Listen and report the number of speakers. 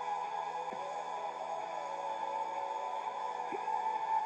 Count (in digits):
0